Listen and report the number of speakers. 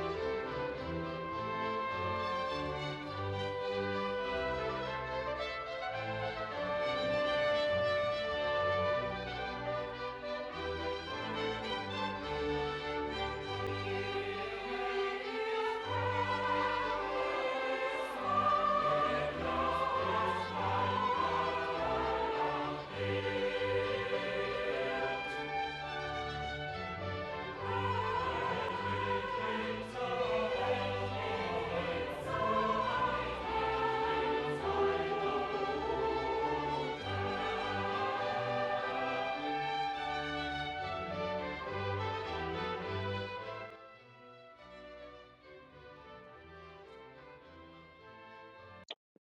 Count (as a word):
zero